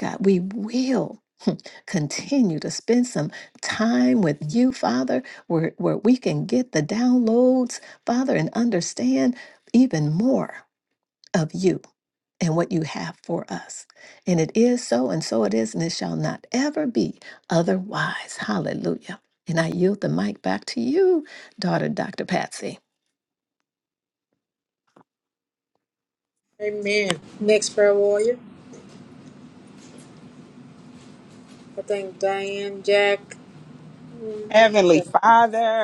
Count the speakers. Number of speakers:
three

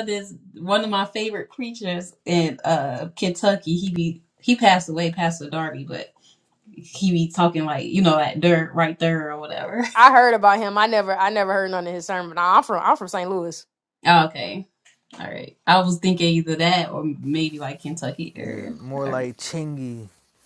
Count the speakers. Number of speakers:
three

